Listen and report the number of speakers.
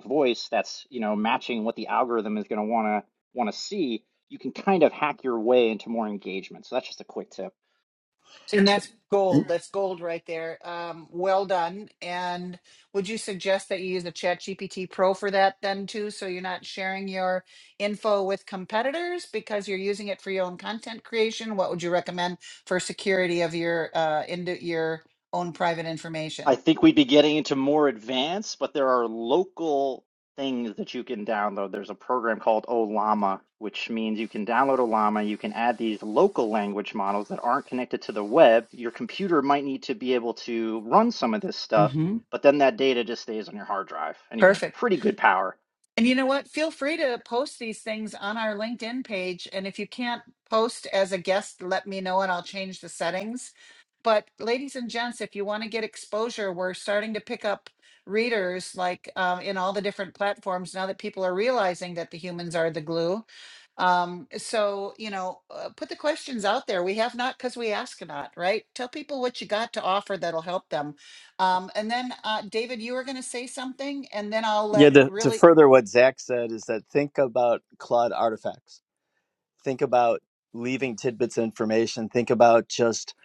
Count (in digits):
3